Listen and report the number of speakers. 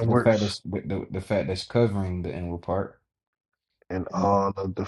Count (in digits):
2